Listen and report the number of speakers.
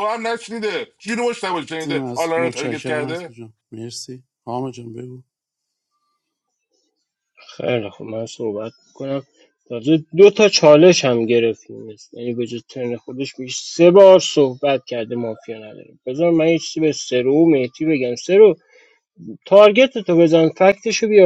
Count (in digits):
3